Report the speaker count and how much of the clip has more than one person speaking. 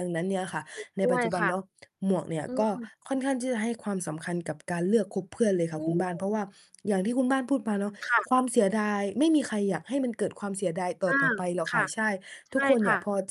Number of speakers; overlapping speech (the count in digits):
2, about 20%